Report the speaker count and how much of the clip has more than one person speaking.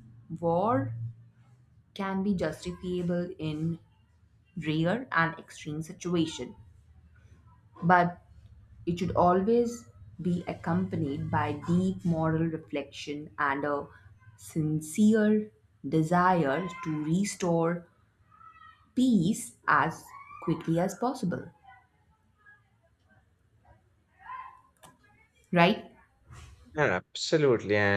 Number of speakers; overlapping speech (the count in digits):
2, no overlap